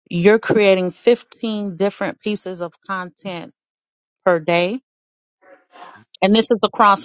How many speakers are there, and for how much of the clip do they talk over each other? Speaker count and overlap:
1, no overlap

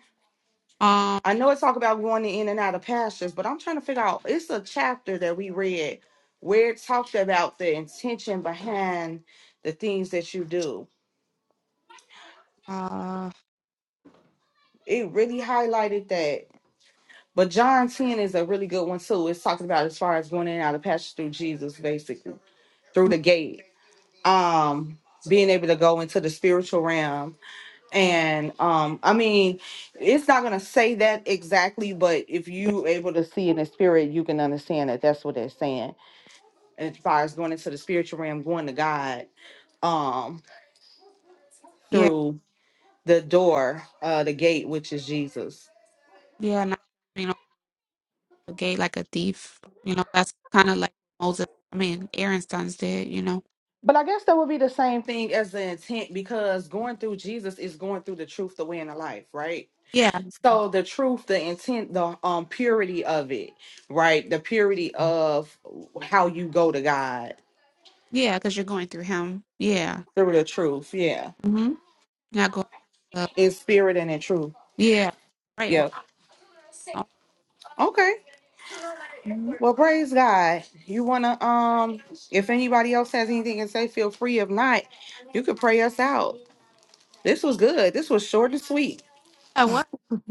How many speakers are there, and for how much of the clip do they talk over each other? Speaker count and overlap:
2, under 1%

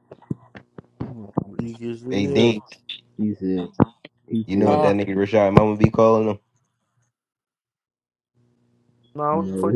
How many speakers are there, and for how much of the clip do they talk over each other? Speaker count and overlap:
3, about 14%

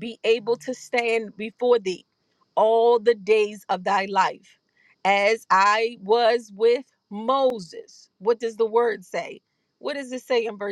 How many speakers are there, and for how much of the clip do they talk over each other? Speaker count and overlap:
1, no overlap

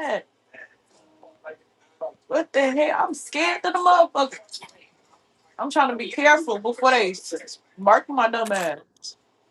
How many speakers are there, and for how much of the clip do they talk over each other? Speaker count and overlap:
1, no overlap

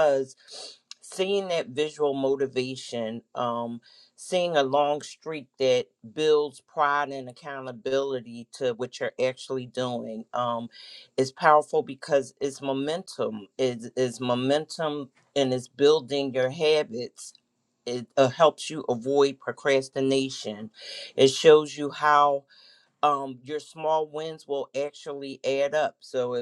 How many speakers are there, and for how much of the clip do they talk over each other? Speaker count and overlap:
1, no overlap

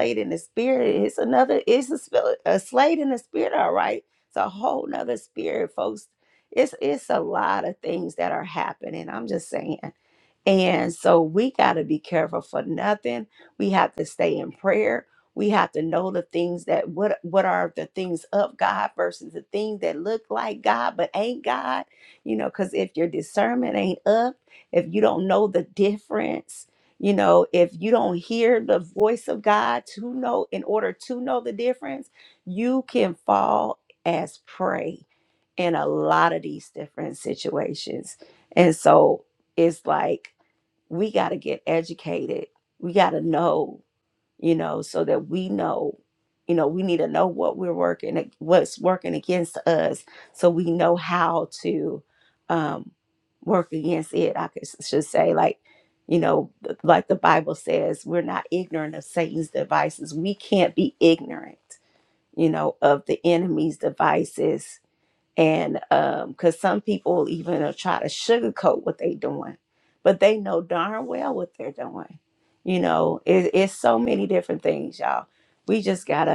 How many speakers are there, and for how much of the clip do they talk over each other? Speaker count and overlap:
1, no overlap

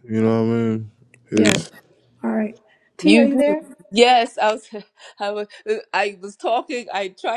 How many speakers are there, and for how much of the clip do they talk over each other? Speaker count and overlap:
3, about 11%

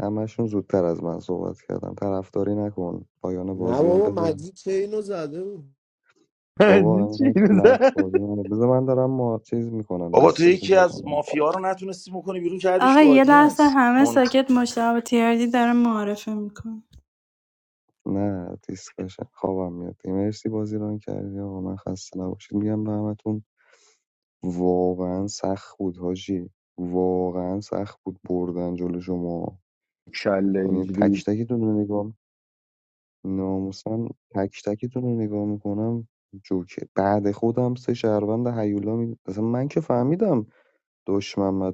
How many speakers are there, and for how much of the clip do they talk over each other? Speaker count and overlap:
5, about 11%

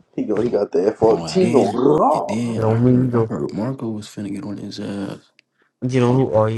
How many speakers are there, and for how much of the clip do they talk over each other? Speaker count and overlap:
3, about 29%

